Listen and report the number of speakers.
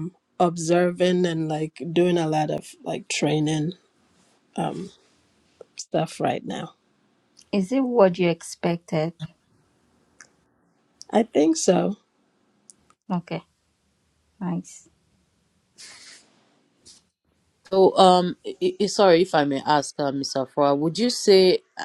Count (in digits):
3